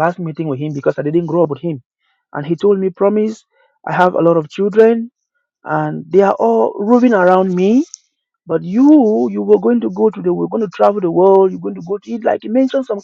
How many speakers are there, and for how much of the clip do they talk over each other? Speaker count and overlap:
1, no overlap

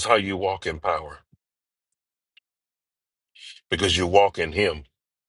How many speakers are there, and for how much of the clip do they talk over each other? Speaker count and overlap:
1, no overlap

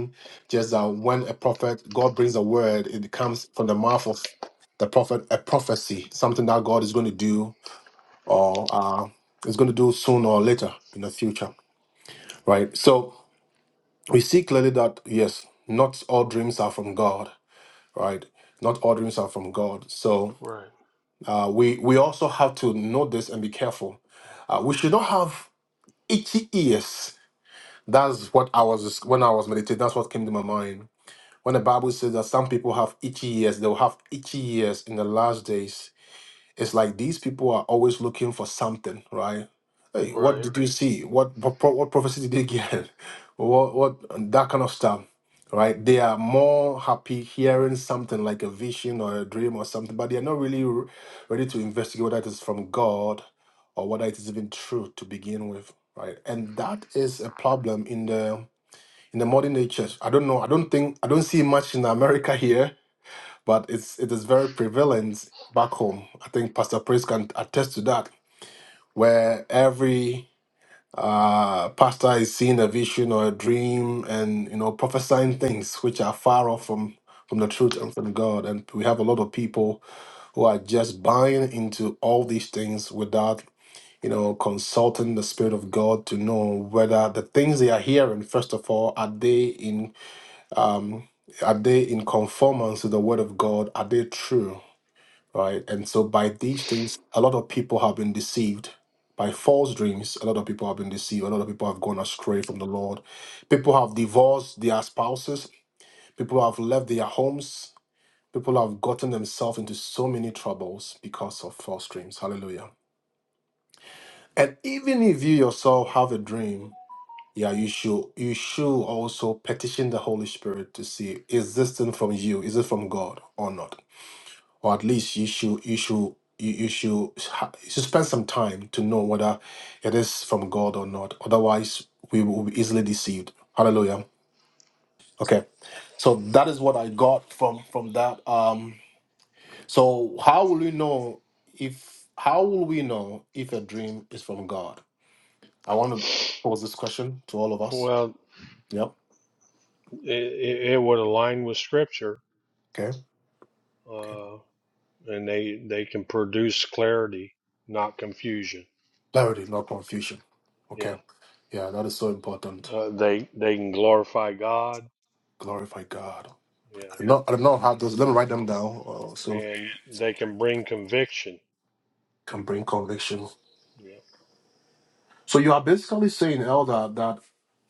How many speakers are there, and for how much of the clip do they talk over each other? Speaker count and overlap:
2, about 1%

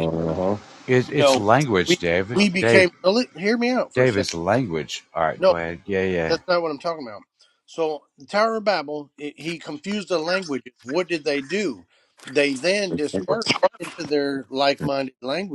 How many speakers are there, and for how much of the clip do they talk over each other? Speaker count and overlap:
3, about 14%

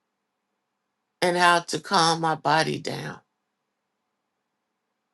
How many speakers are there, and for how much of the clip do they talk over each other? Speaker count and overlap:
1, no overlap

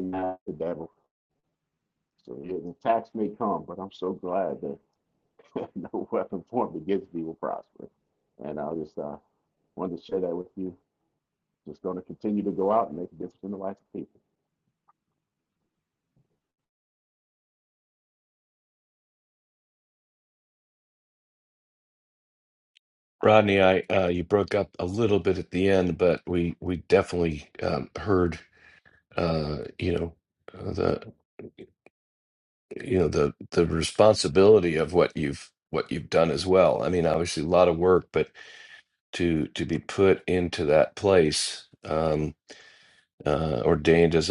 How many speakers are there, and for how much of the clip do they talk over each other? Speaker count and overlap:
2, no overlap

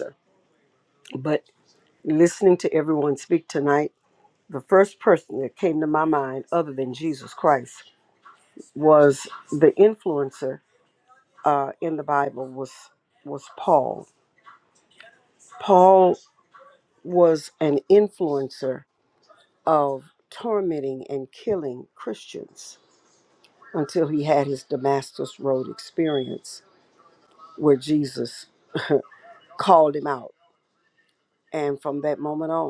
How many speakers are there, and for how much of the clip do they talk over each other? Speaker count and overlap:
1, no overlap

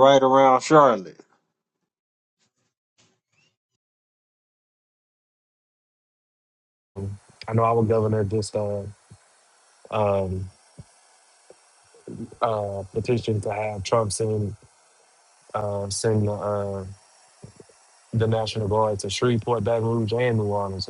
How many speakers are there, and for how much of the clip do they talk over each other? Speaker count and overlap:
2, no overlap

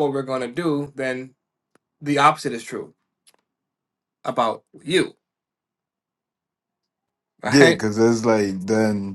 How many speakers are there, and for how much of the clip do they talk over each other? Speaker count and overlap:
2, about 3%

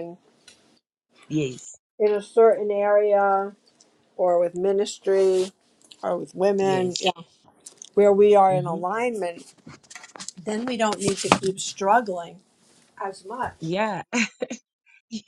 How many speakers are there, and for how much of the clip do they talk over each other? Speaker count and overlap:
2, about 7%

